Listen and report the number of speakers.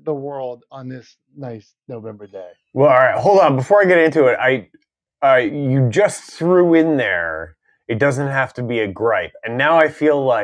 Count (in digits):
2